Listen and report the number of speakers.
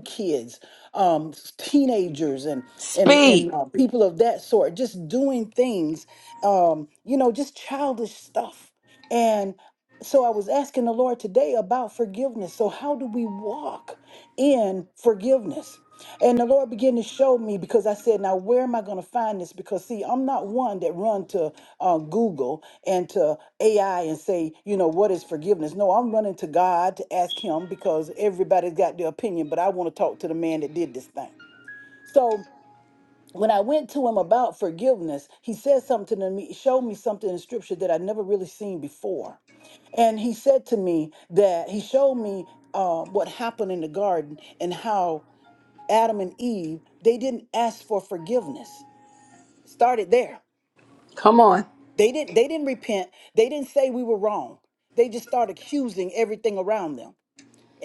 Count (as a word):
two